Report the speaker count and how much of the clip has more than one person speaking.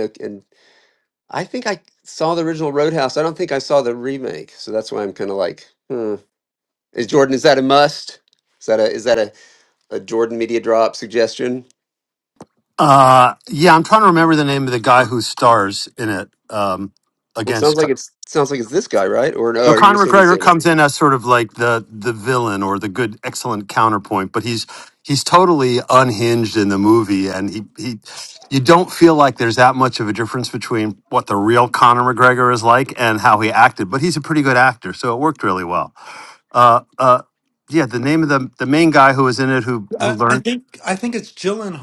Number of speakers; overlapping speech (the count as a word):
three, about 4%